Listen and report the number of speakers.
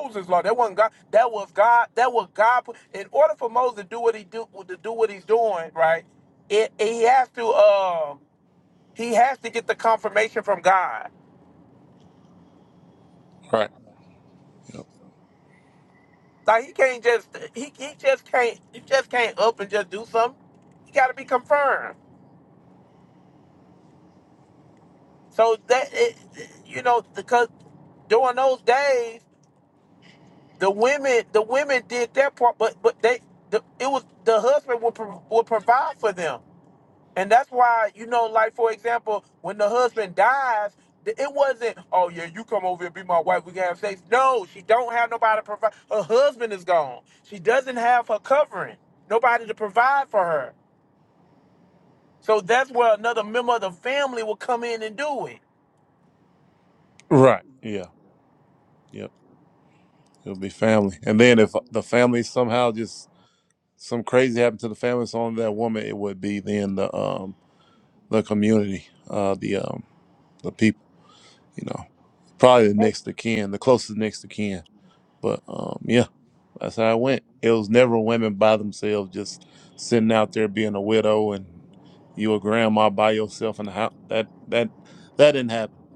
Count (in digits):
2